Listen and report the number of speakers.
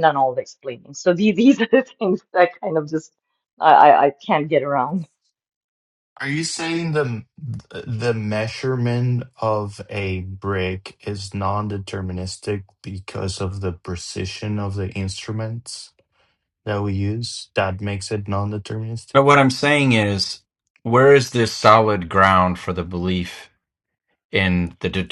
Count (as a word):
three